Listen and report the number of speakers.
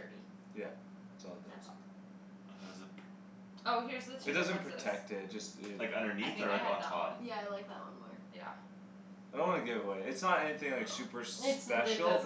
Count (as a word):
four